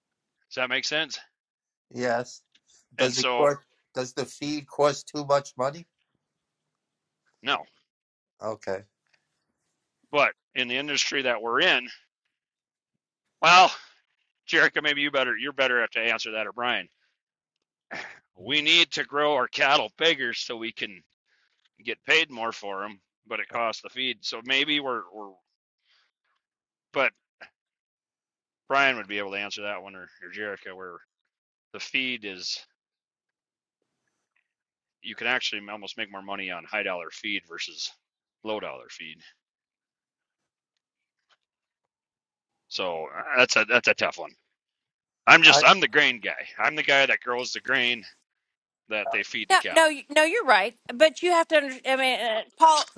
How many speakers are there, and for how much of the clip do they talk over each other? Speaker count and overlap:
3, about 2%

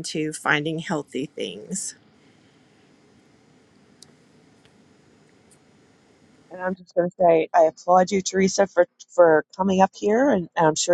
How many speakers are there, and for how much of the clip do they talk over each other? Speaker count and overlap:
2, no overlap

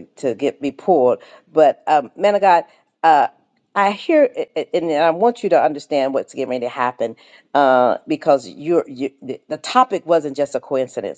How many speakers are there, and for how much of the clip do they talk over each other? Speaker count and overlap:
1, no overlap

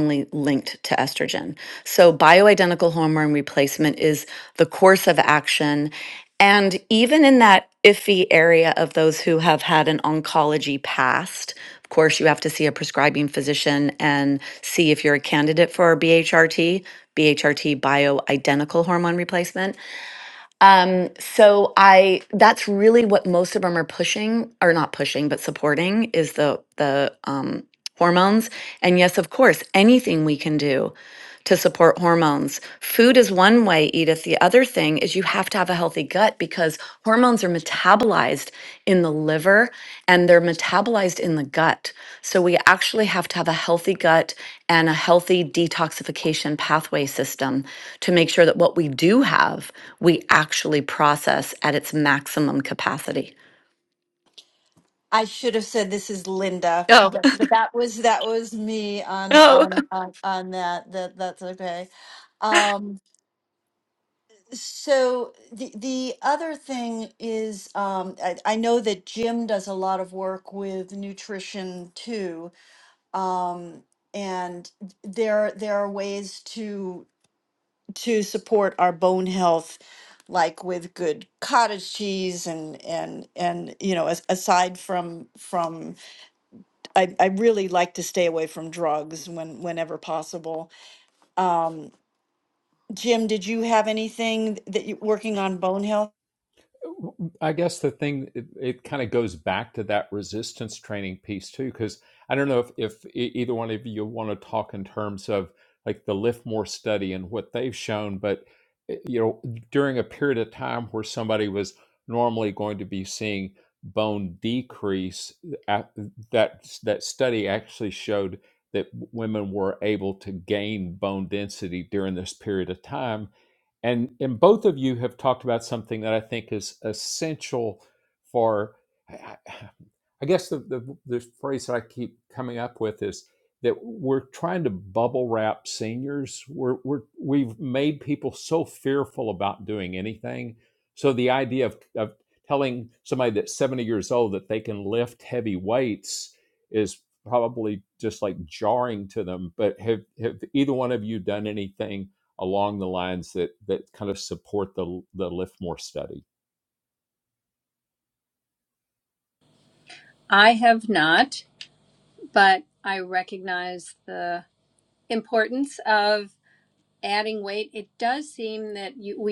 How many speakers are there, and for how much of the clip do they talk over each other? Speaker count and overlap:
4, under 1%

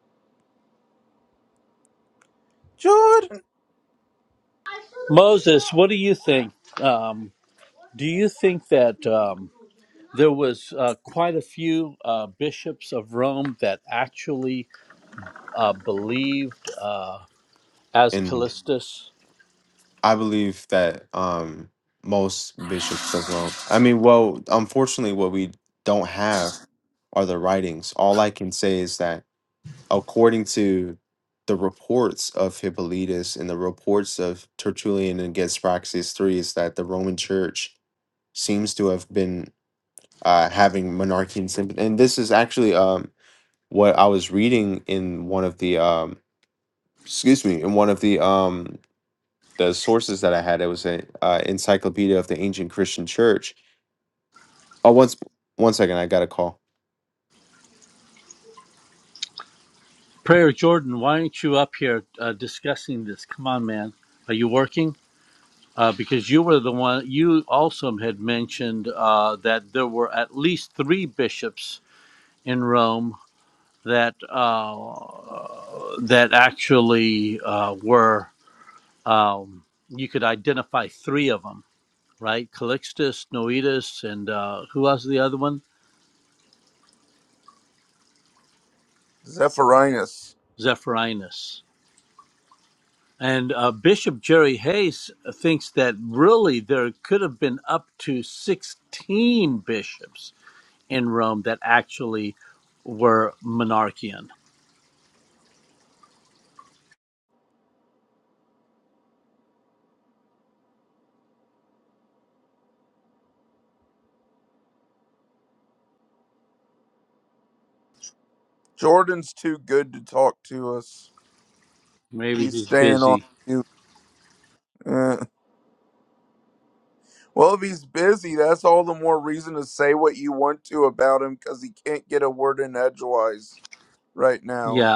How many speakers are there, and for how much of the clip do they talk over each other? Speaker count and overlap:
3, about 1%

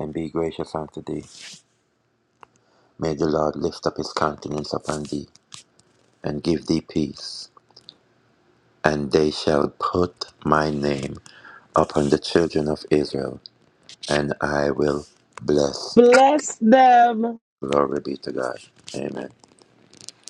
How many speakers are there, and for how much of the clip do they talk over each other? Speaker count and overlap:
2, no overlap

